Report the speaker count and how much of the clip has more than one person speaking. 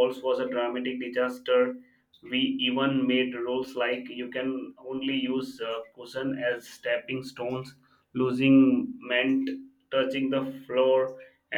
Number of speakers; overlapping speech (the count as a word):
one, no overlap